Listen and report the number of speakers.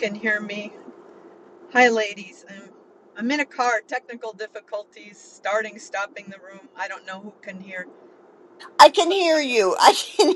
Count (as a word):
two